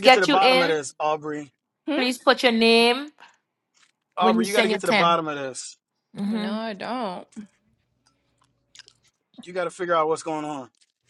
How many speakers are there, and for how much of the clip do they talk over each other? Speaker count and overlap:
three, about 17%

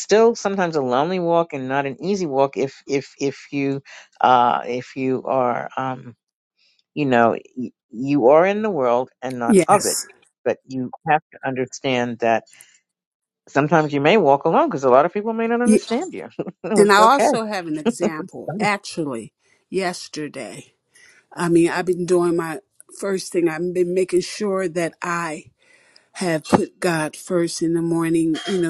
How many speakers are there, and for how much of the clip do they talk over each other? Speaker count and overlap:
two, about 4%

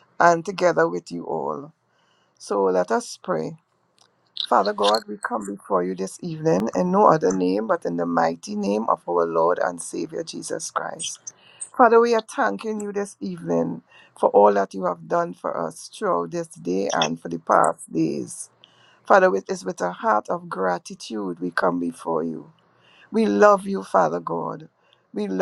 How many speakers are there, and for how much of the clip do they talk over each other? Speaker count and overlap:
one, no overlap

